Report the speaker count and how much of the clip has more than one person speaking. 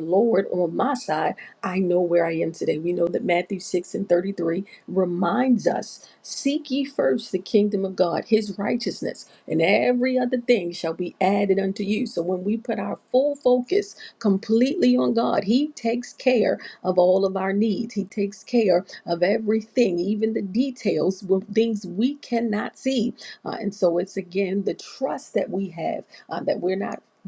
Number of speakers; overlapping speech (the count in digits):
1, no overlap